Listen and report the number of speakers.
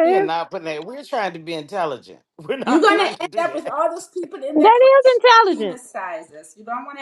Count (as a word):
three